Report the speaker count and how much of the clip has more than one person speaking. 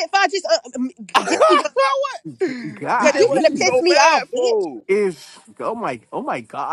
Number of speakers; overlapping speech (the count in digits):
3, about 43%